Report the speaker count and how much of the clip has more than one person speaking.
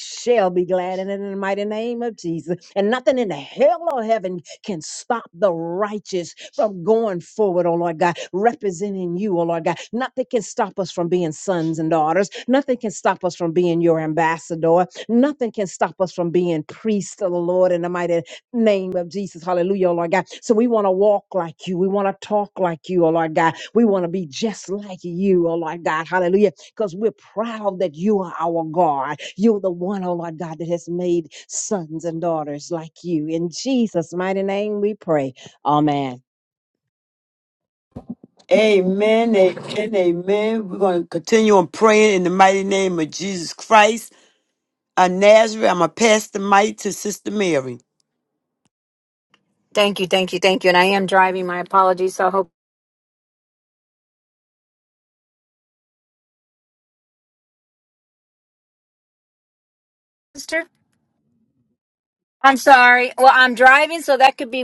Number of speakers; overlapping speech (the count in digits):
3, no overlap